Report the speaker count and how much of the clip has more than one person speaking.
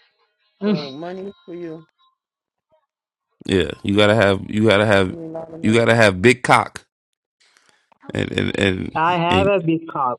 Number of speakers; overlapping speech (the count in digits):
3, about 7%